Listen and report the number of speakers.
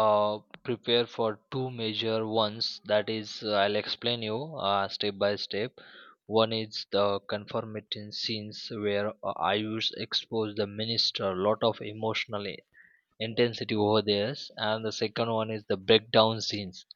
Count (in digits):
1